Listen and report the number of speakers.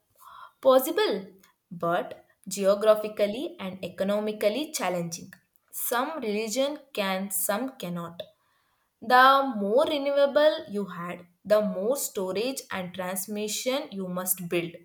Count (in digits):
1